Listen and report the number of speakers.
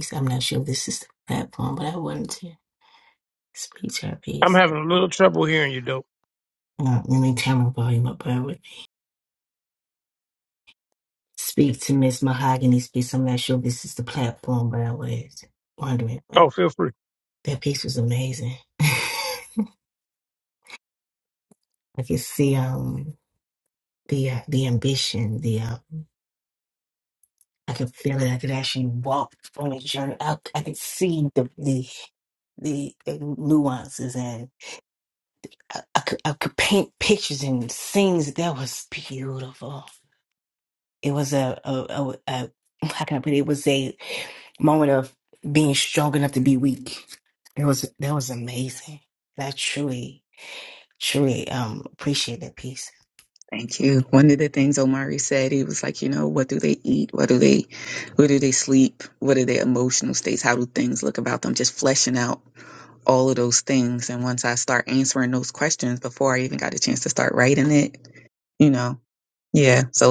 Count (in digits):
3